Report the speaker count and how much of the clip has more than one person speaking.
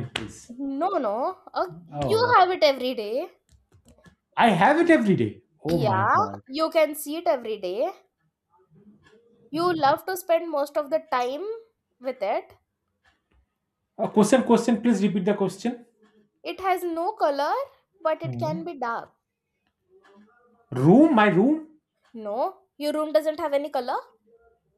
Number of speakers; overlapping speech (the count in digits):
2, about 6%